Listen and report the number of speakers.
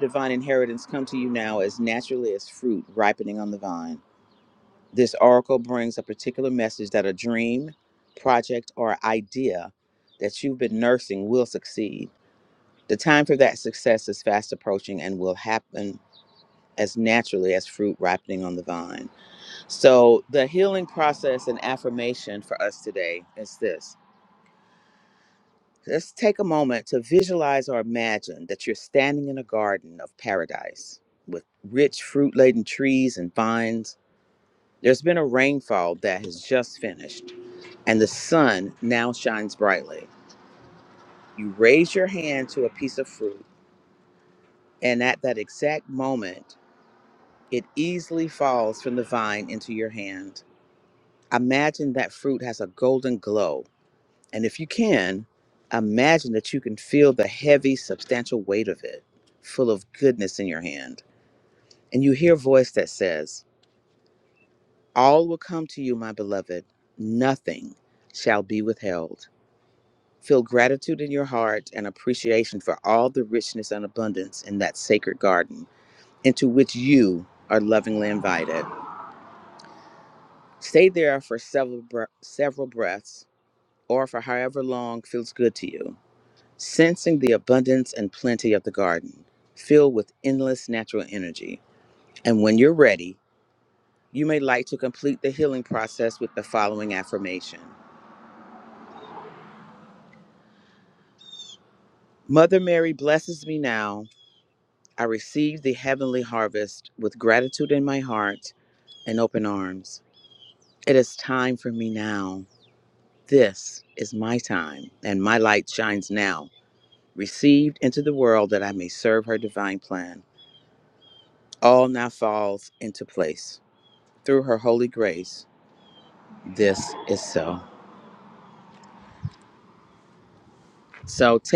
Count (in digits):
1